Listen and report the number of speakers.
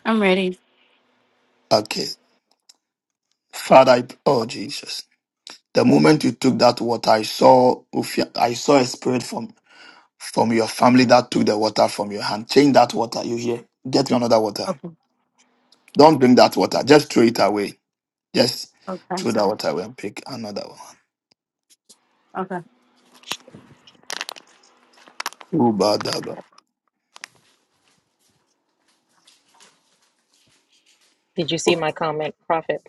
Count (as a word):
three